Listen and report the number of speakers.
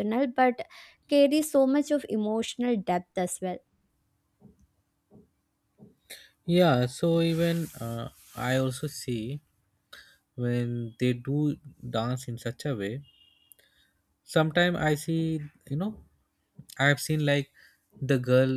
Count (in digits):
2